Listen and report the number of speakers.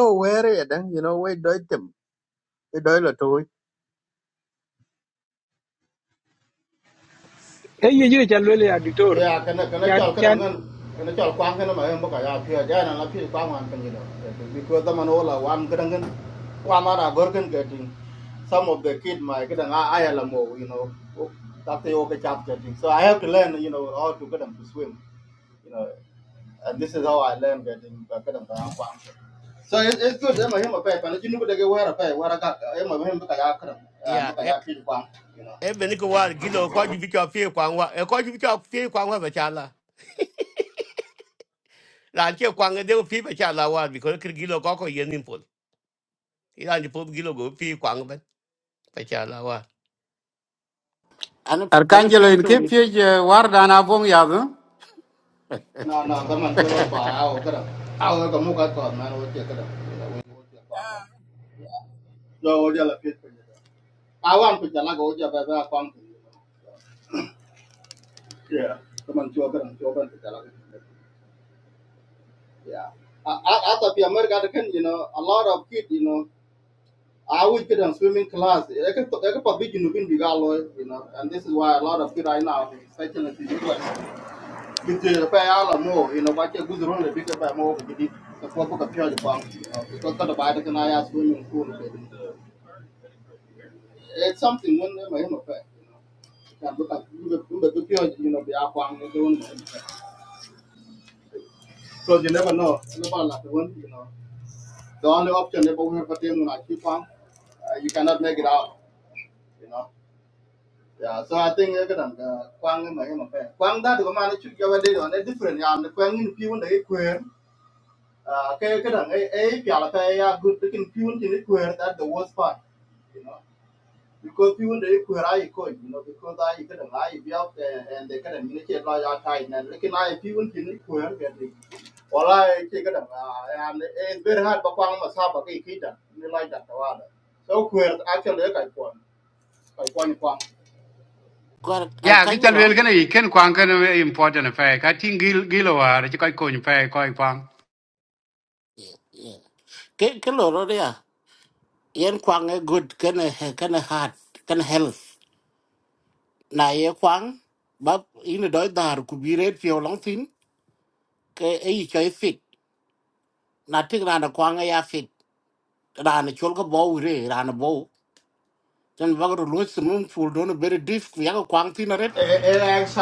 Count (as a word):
six